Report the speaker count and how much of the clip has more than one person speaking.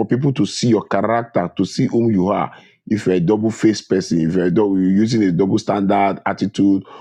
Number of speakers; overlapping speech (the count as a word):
one, no overlap